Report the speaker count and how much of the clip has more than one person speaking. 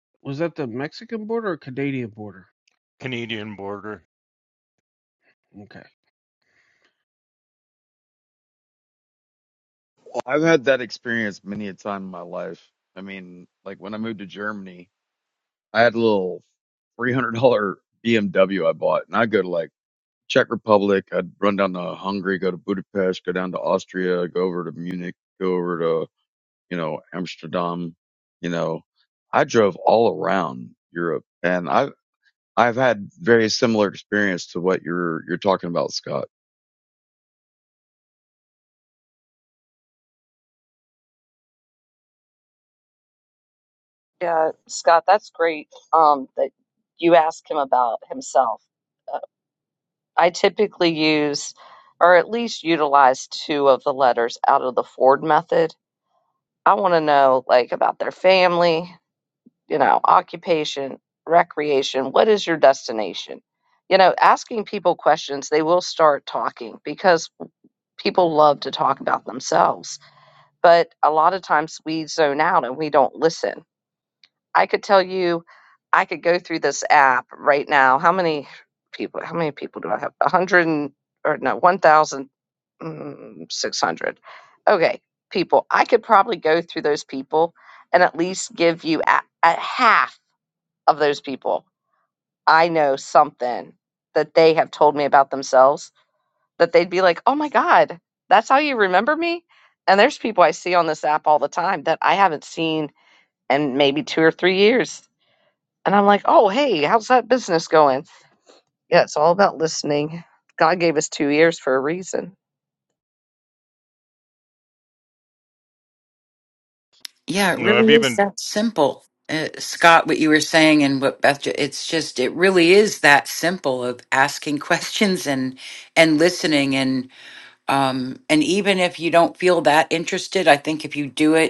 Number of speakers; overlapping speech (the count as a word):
five, about 1%